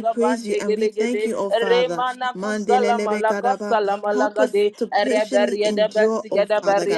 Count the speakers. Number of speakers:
2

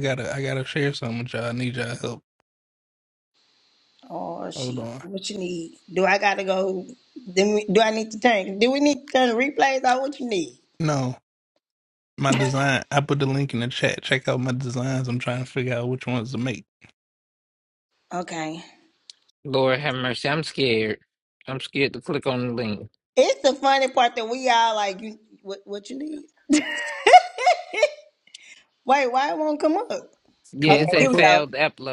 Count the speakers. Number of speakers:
3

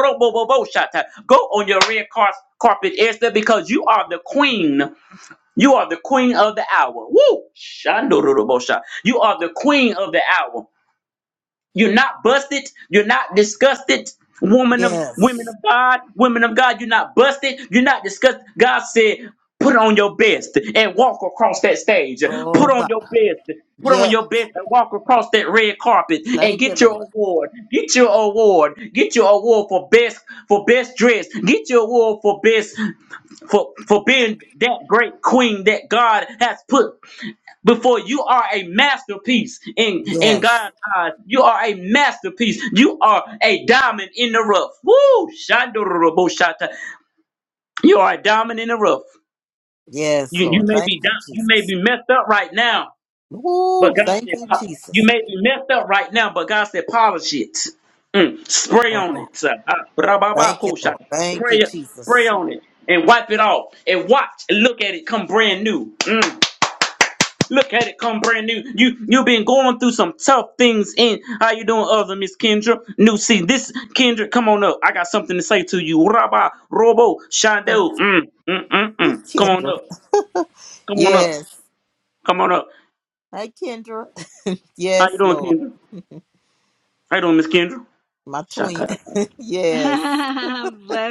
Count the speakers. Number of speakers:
3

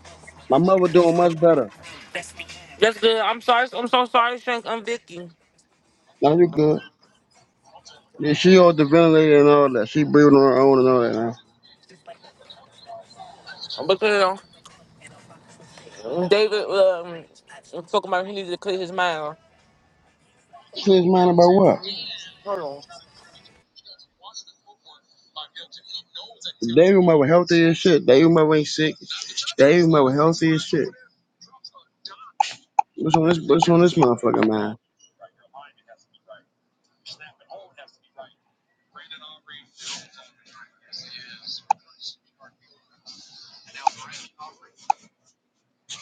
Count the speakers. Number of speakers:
2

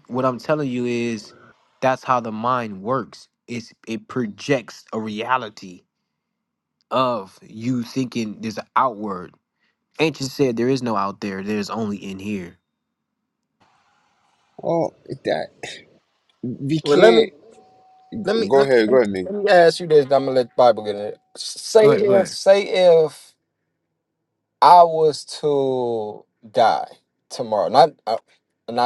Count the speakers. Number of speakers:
3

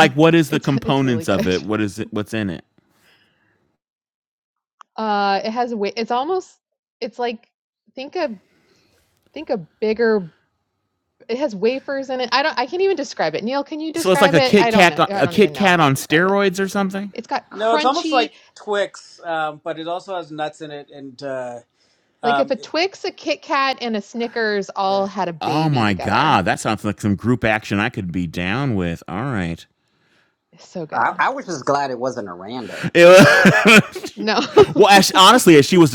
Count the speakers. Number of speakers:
4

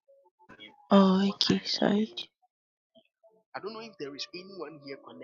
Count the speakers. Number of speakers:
2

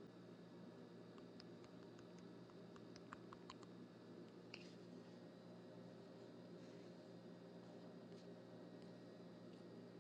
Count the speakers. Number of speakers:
0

